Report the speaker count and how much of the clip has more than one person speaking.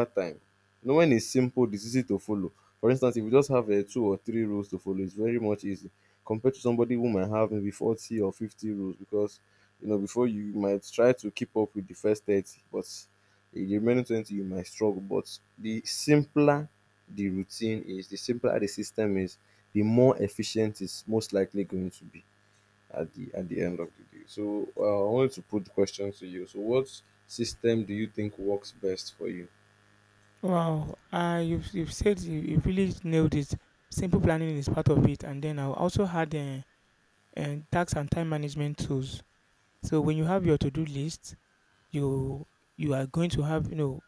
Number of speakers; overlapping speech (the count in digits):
2, no overlap